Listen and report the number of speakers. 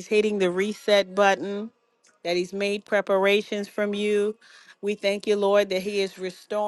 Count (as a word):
one